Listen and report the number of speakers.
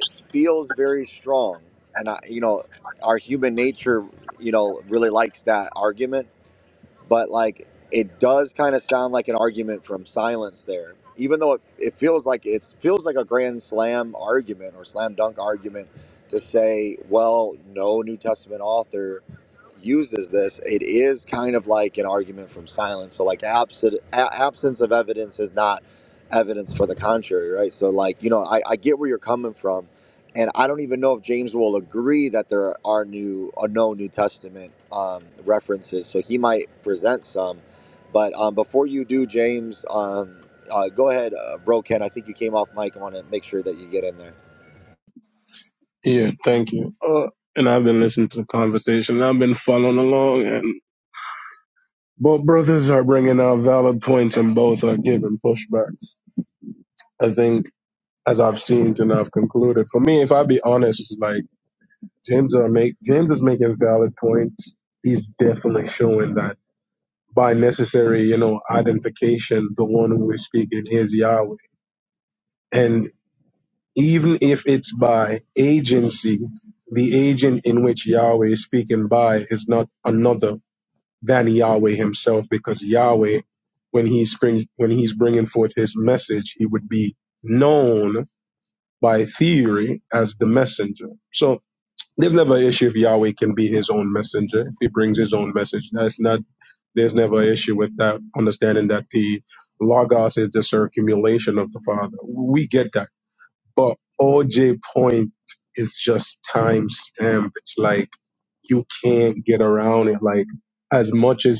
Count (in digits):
2